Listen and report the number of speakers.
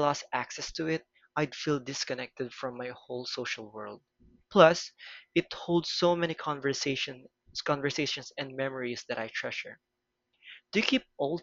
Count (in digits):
1